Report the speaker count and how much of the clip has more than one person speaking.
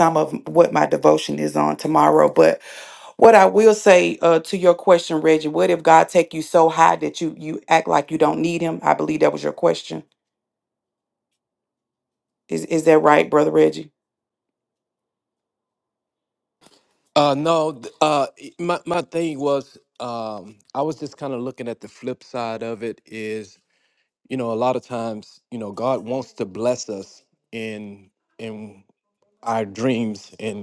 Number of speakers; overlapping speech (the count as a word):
two, no overlap